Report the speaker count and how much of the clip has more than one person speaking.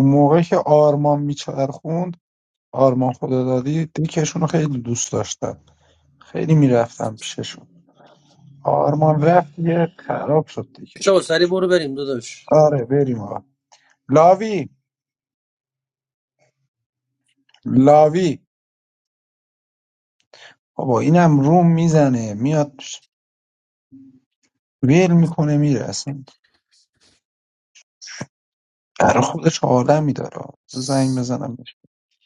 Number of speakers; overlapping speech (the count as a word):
two, under 1%